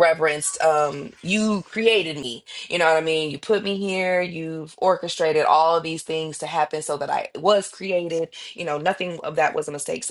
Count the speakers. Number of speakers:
1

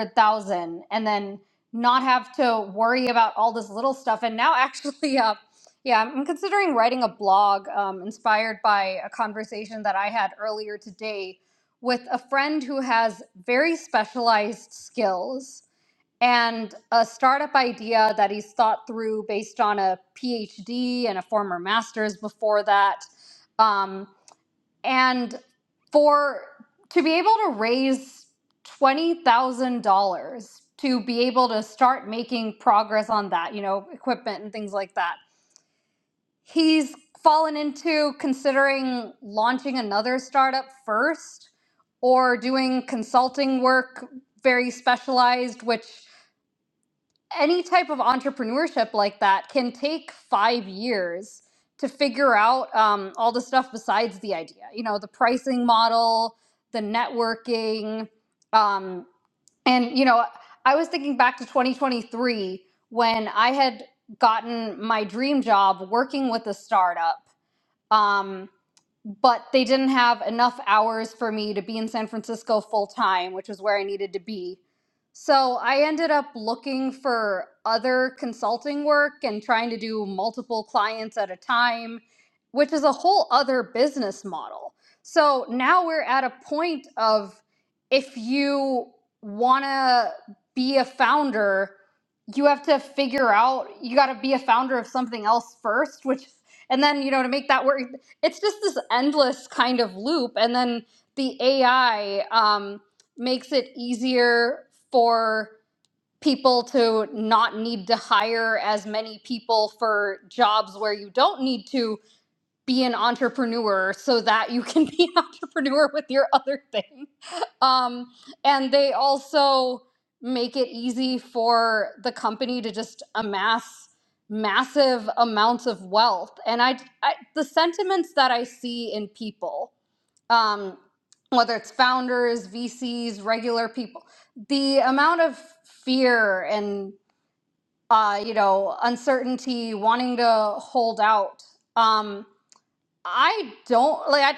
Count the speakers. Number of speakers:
1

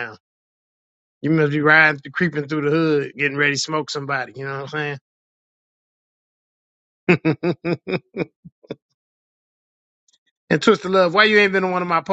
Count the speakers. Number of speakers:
1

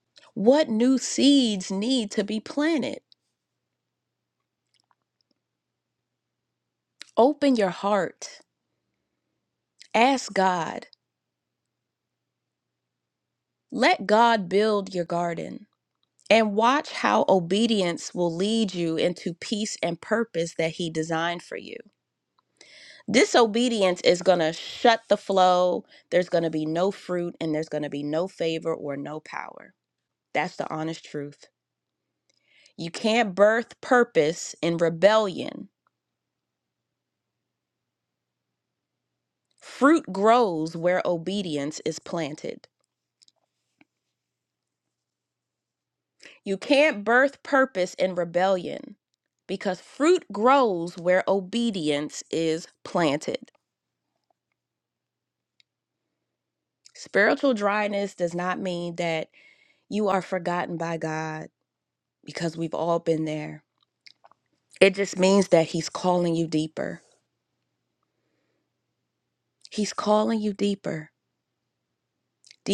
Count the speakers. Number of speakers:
1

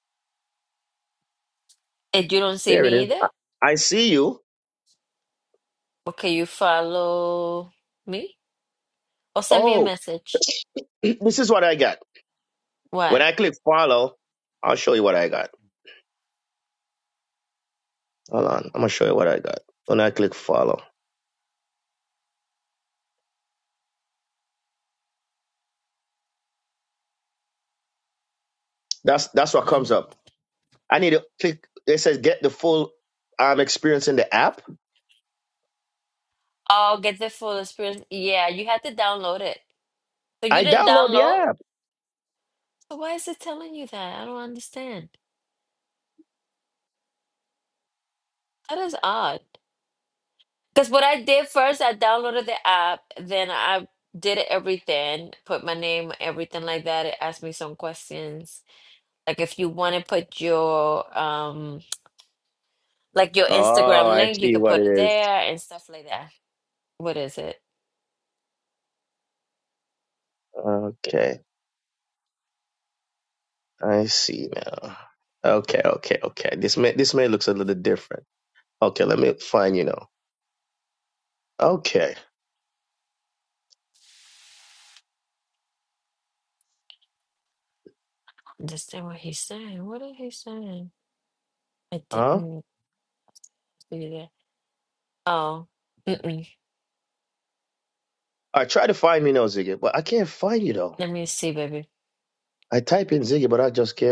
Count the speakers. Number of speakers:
2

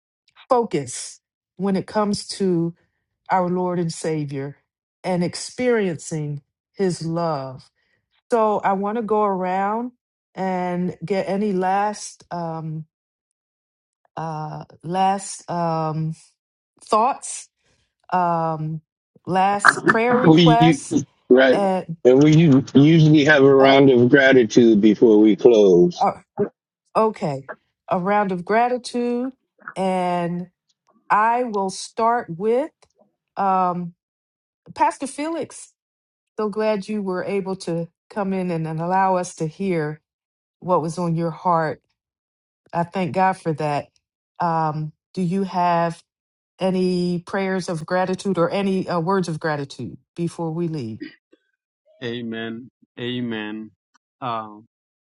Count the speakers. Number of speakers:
3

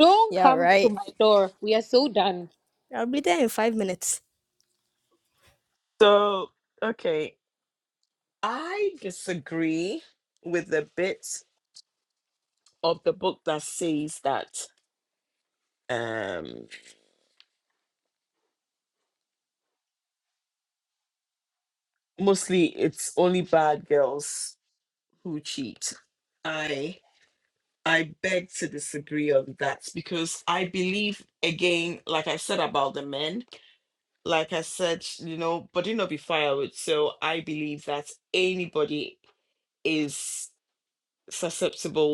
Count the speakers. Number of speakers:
3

